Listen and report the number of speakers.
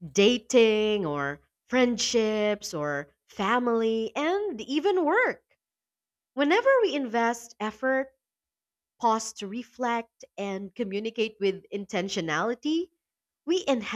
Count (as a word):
one